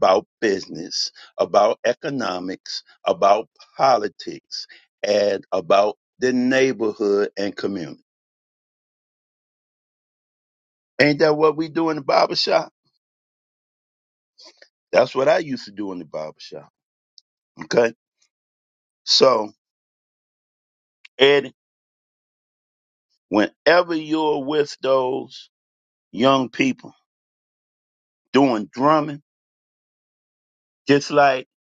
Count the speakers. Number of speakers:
1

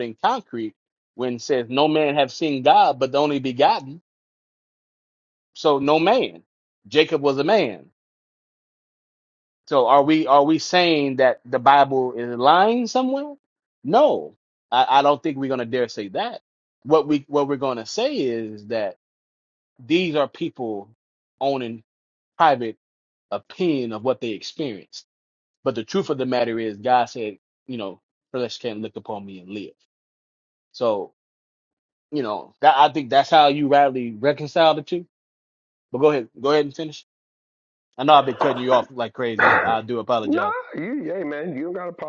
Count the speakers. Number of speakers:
2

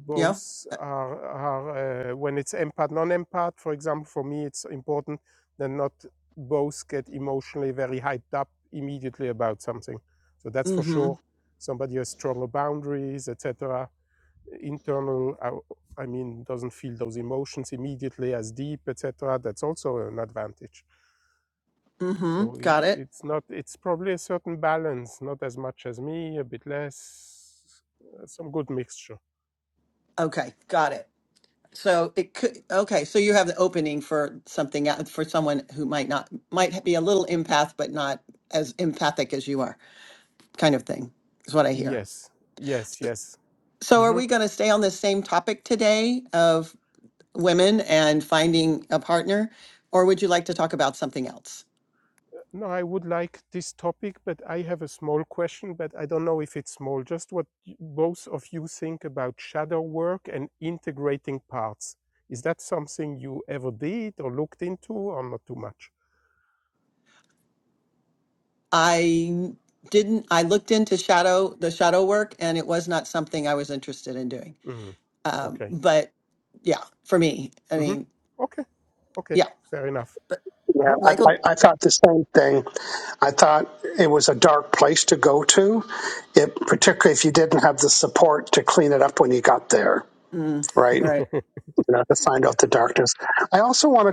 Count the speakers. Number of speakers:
3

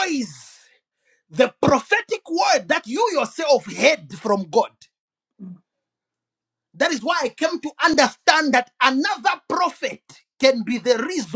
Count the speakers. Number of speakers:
1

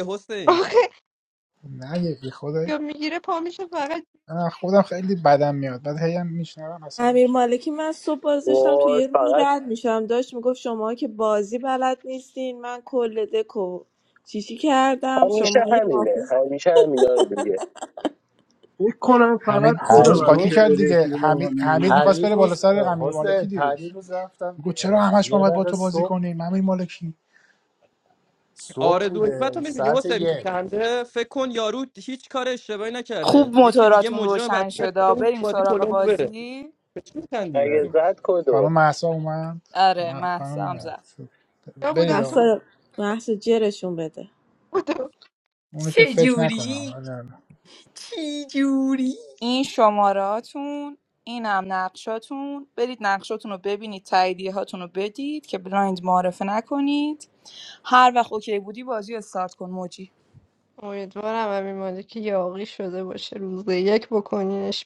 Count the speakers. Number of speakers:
9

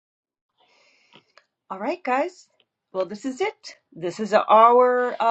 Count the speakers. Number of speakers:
1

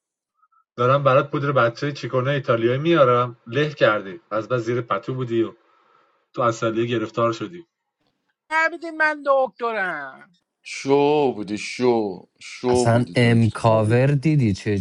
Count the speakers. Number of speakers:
4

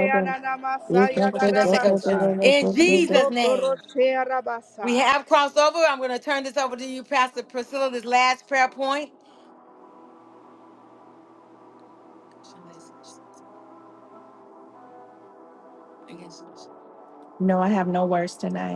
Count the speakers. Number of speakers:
3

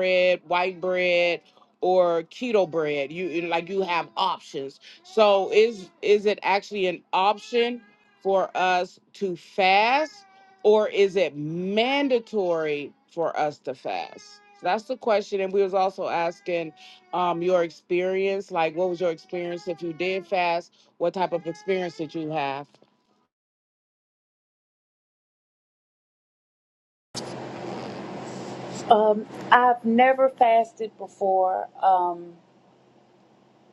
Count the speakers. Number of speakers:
2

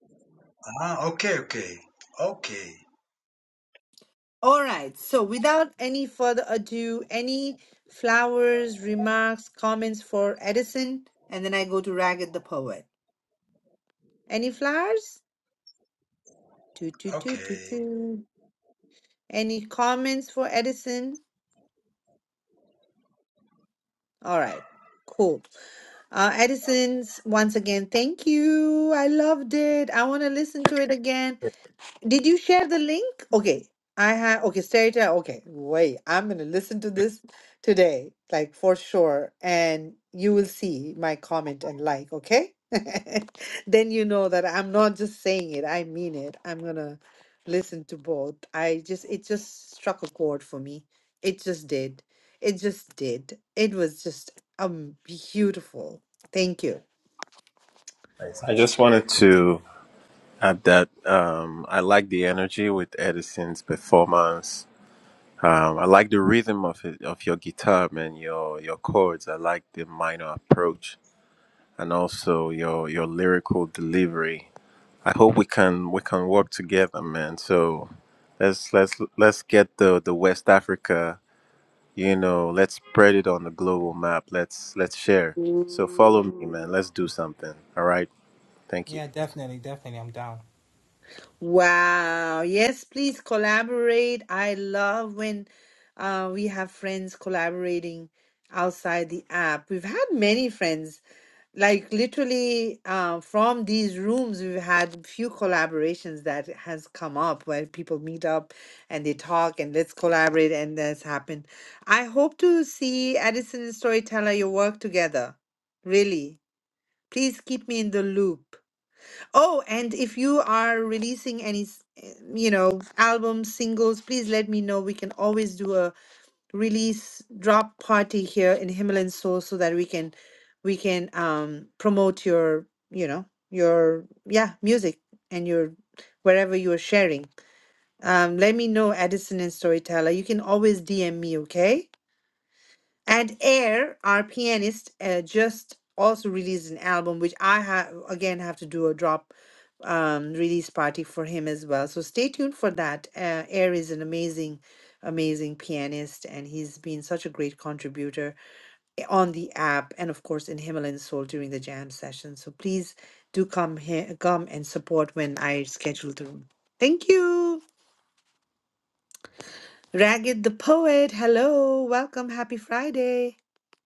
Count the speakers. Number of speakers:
4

